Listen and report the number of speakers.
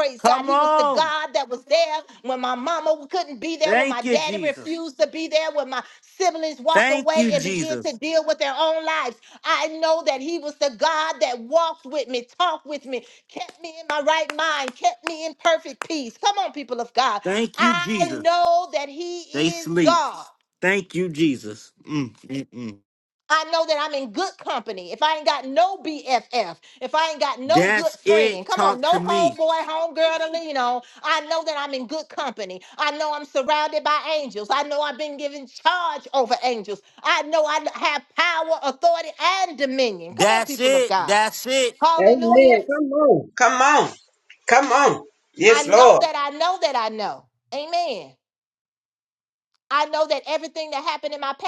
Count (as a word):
three